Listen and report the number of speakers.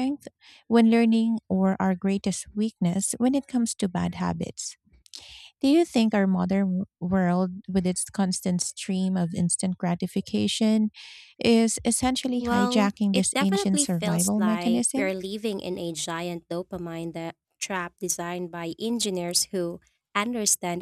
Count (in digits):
2